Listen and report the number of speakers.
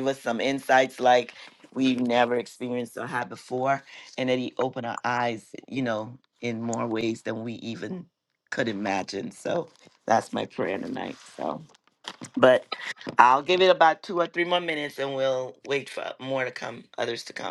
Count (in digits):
1